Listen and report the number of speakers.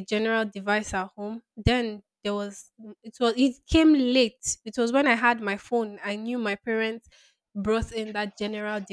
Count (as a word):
one